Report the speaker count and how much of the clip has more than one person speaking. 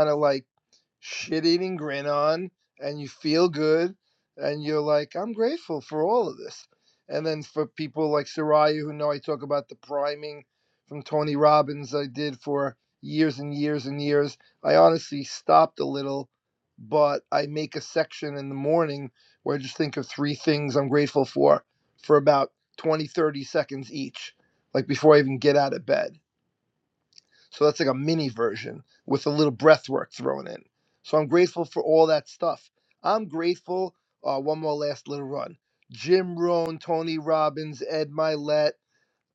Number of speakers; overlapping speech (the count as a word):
one, no overlap